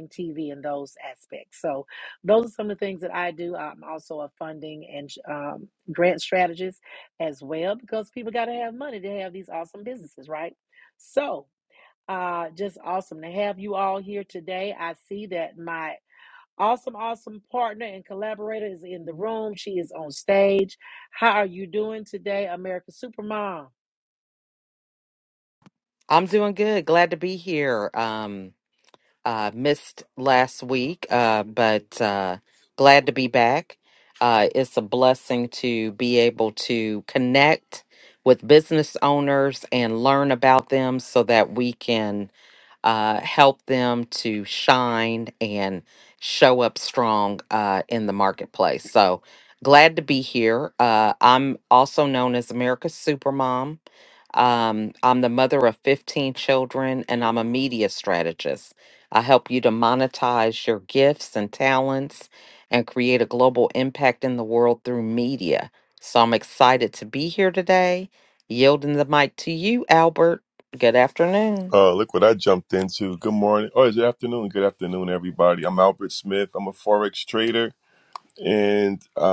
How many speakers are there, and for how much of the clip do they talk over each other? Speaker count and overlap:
3, no overlap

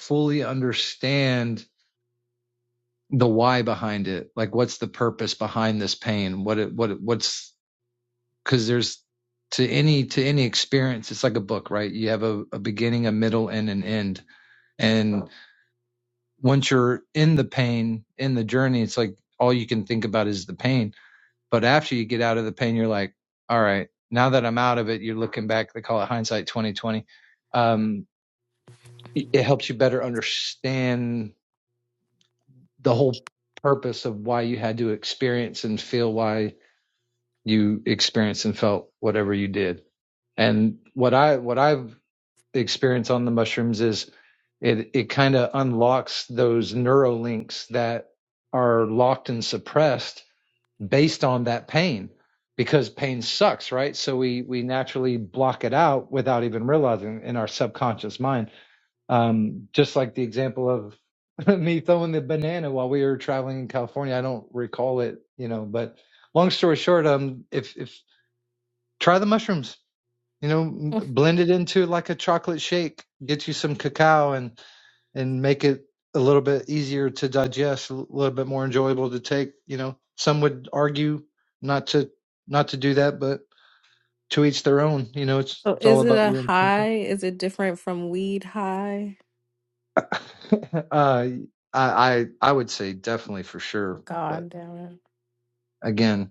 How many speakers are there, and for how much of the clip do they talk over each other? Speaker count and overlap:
2, about 2%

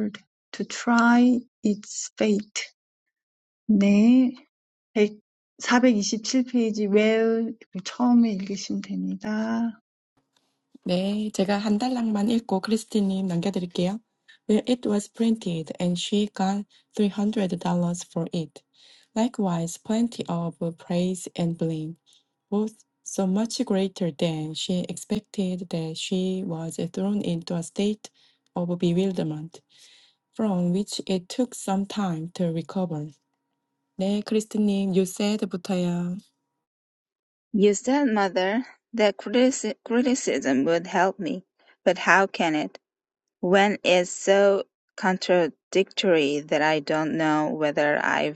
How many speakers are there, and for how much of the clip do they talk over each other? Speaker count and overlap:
3, no overlap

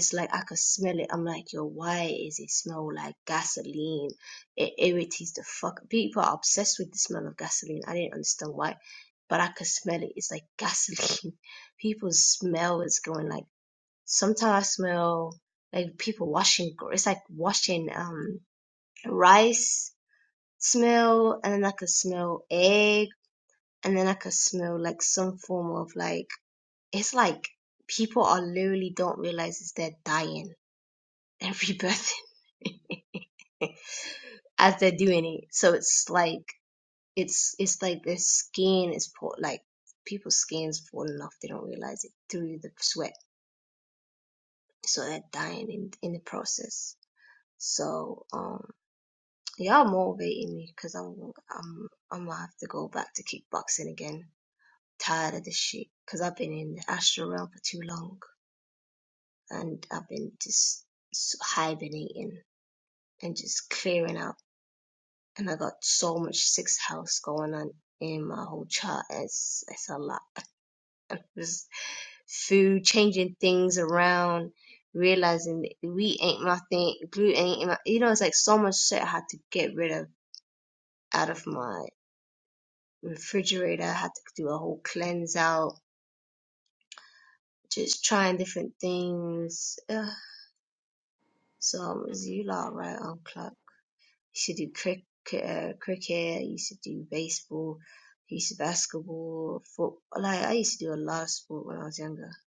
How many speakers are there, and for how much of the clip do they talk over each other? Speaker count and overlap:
1, no overlap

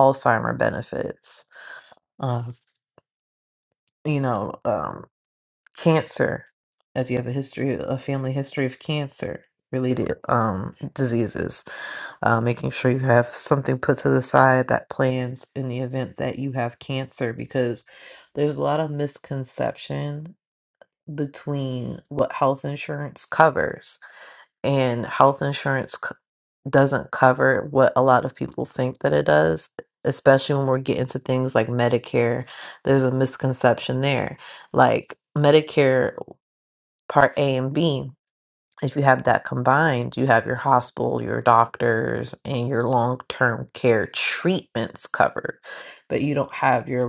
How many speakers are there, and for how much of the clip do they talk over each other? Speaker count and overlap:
1, no overlap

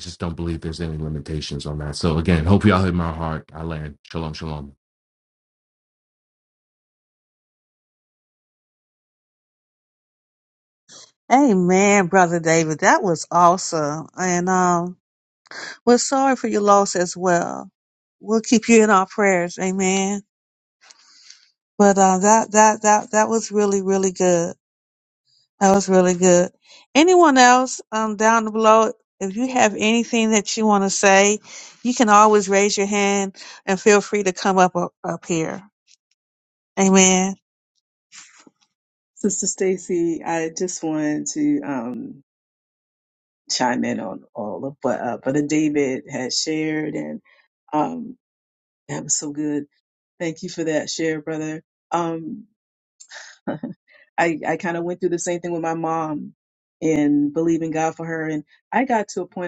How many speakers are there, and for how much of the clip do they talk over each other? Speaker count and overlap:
3, no overlap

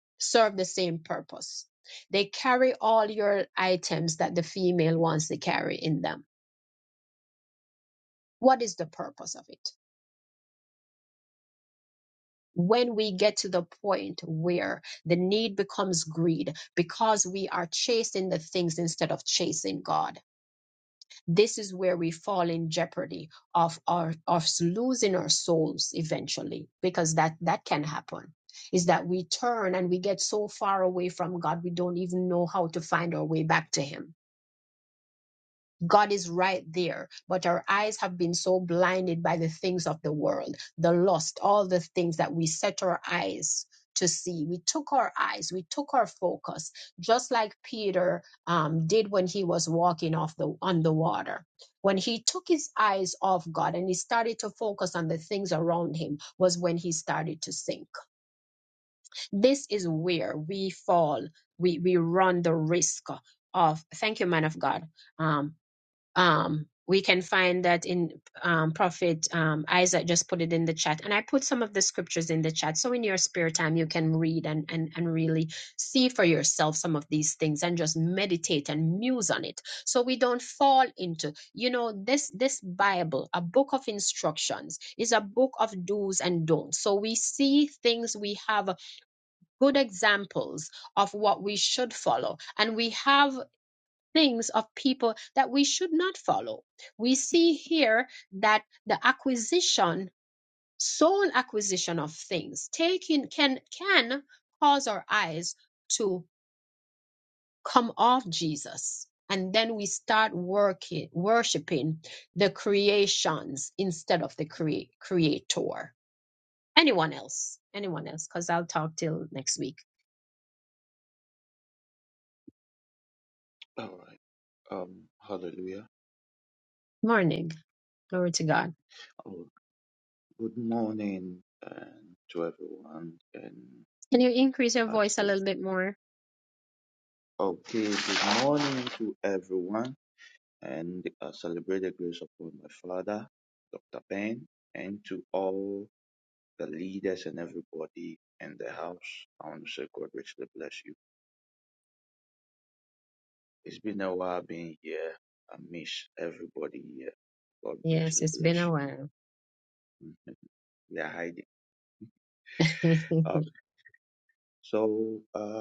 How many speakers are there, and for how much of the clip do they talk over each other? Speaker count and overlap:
2, about 1%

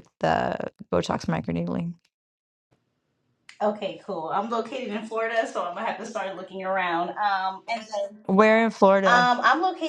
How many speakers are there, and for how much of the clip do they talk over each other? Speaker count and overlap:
2, about 2%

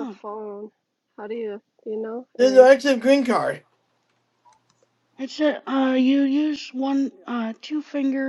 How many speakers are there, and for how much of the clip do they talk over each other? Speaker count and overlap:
3, about 5%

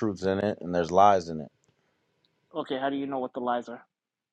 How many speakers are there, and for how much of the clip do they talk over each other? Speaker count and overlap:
2, no overlap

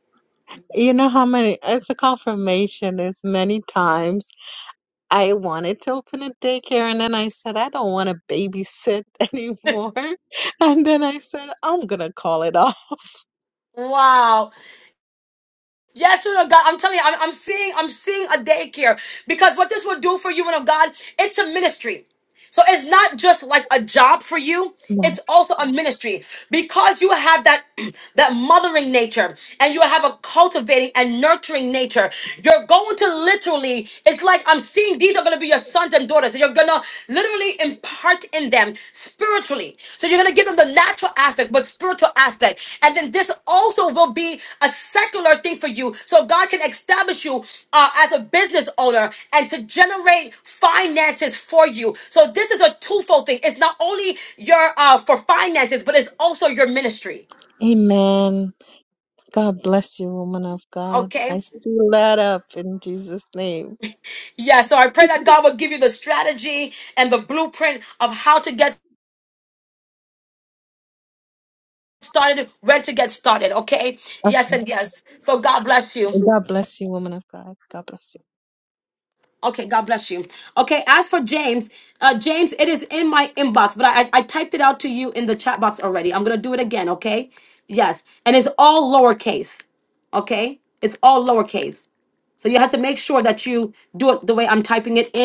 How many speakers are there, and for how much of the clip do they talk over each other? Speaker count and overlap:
2, about 1%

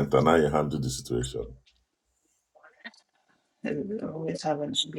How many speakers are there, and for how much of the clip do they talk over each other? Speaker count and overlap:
2, no overlap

